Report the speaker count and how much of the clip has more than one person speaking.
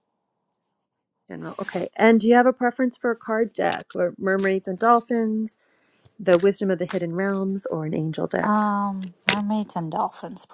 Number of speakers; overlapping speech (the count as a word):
two, about 2%